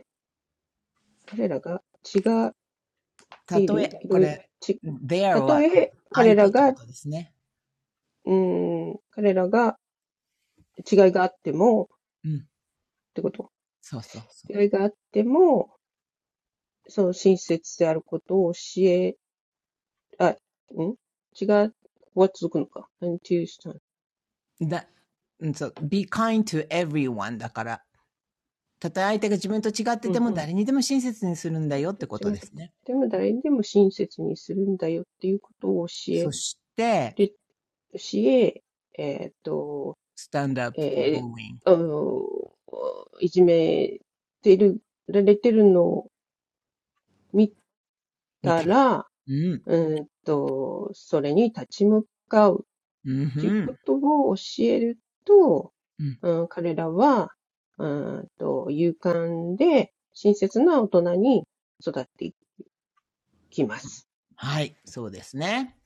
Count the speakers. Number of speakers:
two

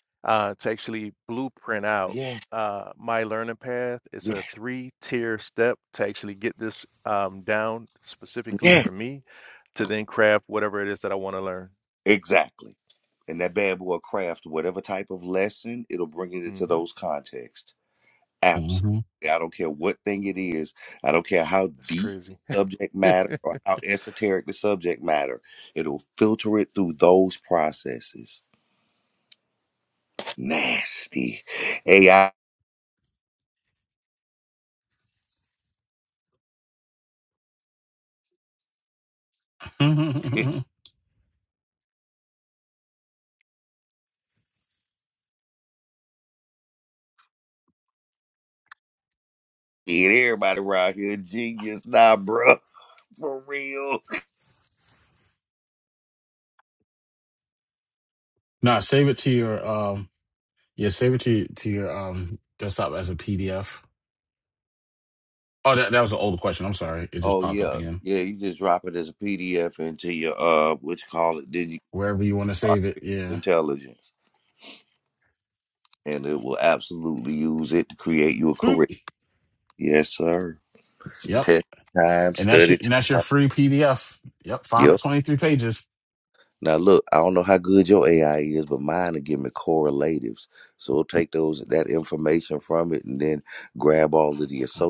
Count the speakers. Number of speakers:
three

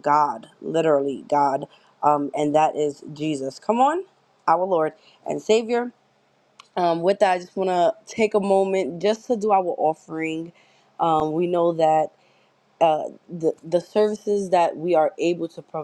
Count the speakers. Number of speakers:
one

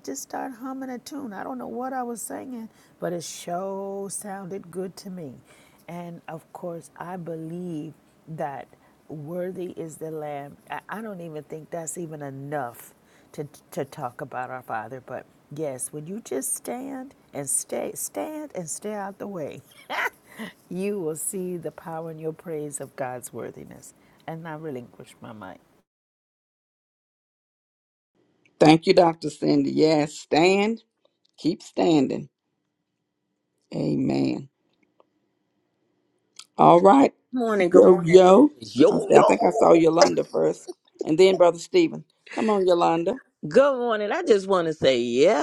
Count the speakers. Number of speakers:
three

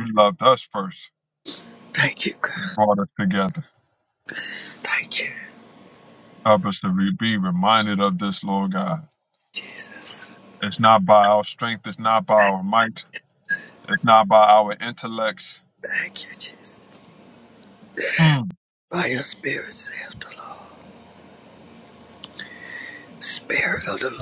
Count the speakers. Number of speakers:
two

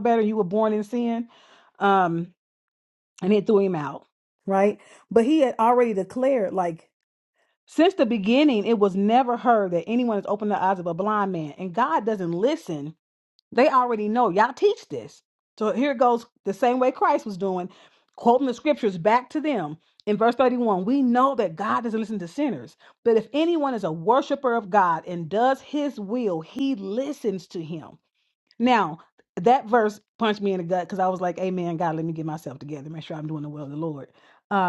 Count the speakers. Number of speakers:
one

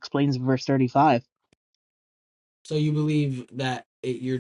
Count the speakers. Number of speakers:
two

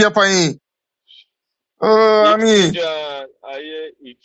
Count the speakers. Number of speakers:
two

